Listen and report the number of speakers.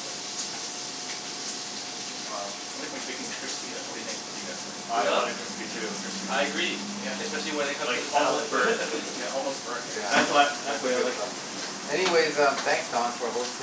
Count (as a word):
four